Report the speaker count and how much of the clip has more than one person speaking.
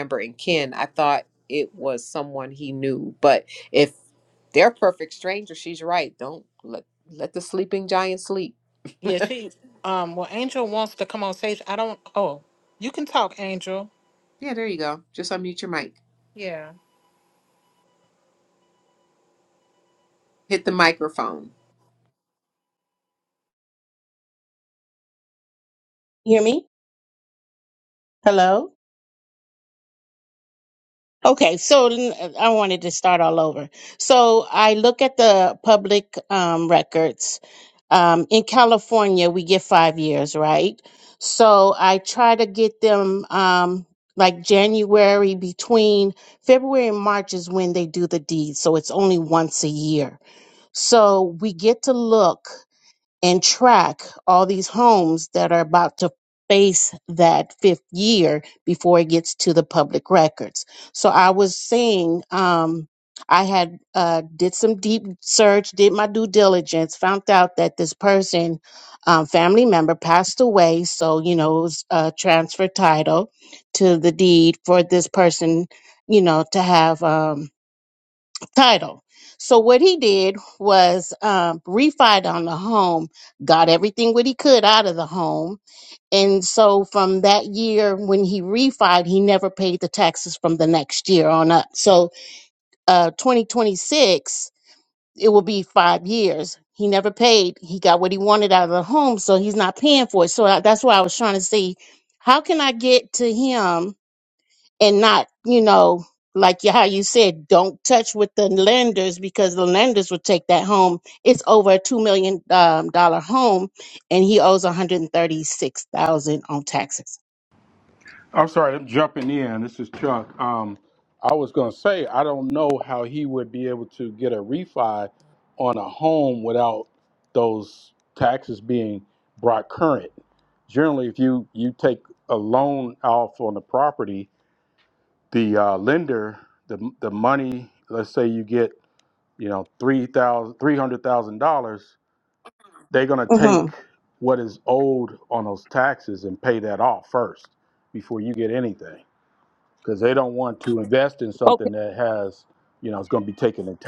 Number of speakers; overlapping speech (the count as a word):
four, under 1%